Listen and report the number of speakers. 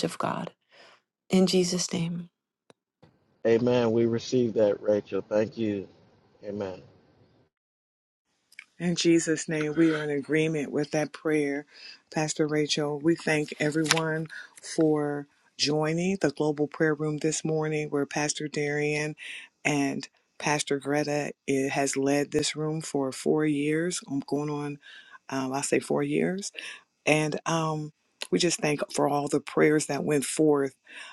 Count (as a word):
three